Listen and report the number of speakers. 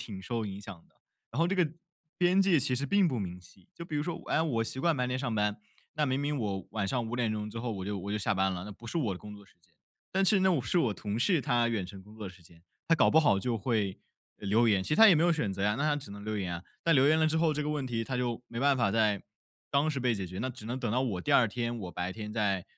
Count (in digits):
1